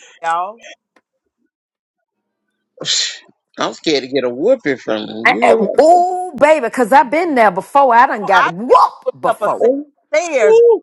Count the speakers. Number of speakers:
three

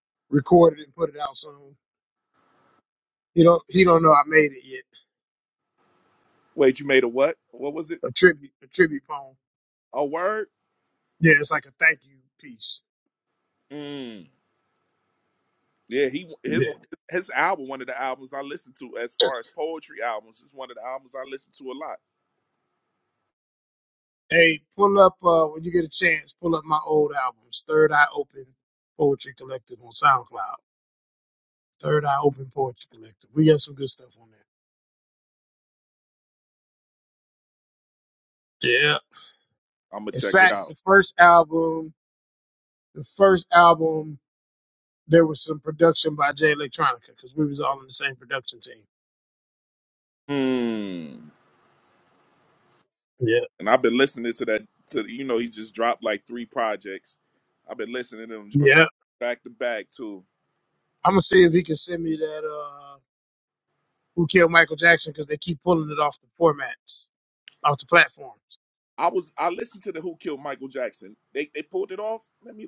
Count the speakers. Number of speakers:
two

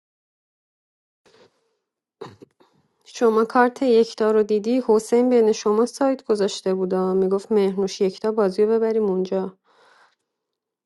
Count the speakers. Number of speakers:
one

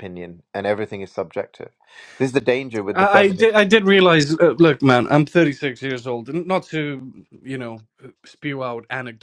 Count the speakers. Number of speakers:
two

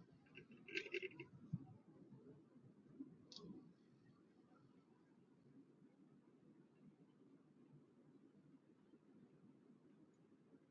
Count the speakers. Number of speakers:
zero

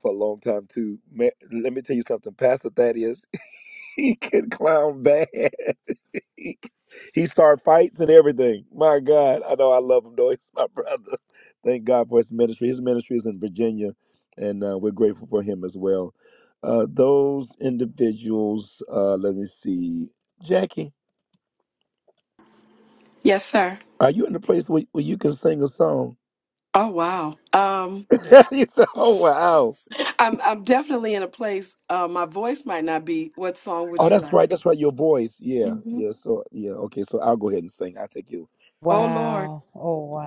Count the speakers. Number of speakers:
three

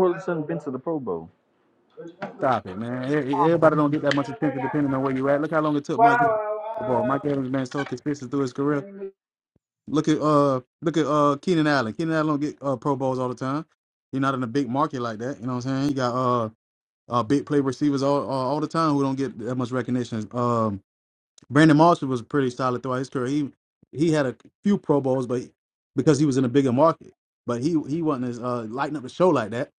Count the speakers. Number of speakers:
two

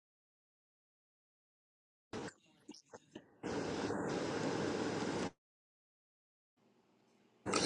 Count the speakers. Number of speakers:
zero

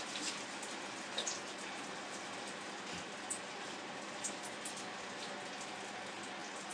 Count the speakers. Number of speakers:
zero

